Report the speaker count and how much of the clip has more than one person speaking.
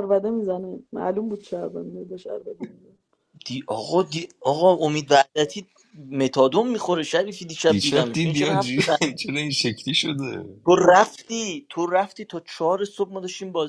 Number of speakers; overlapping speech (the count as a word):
three, about 9%